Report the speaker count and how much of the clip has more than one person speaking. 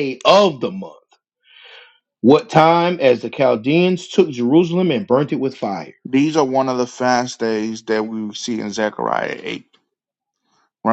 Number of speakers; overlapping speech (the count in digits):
2, no overlap